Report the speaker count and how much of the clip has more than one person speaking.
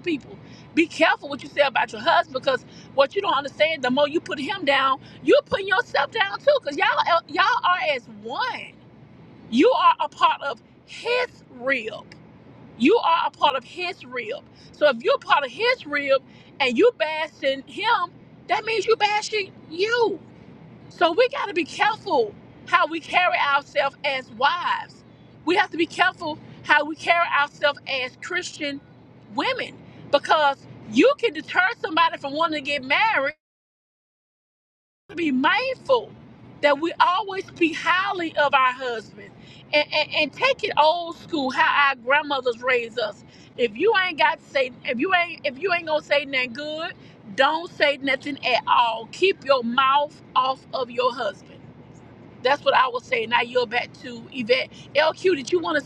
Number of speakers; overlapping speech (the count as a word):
one, no overlap